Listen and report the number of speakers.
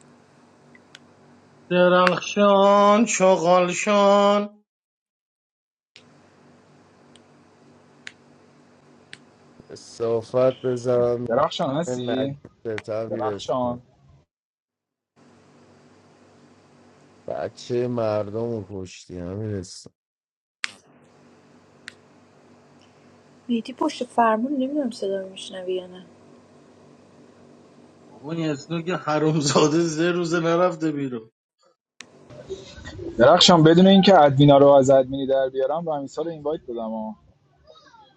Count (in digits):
4